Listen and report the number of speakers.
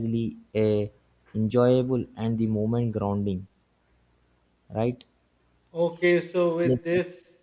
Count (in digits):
2